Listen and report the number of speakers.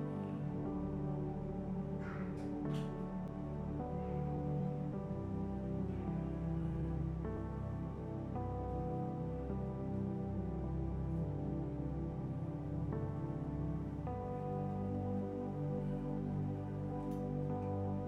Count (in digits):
0